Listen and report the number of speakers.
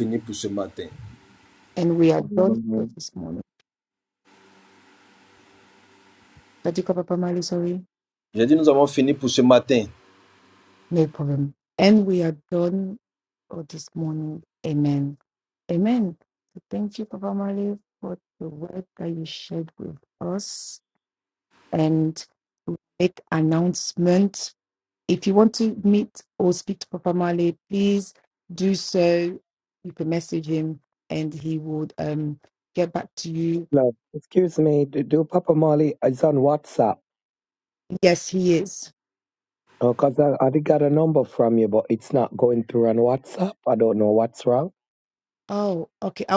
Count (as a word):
three